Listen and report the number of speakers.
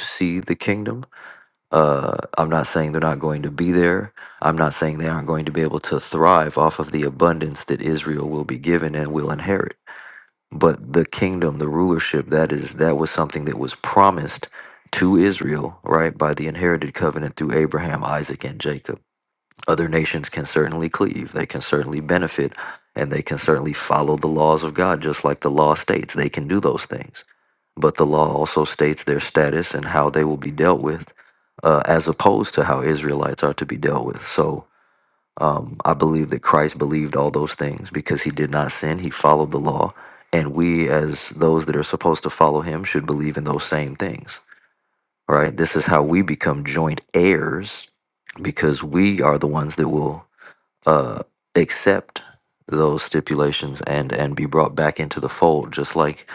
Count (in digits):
1